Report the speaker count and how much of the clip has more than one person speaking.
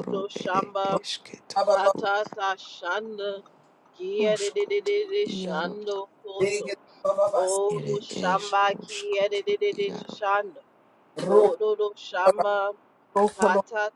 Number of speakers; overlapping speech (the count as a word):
three, about 42%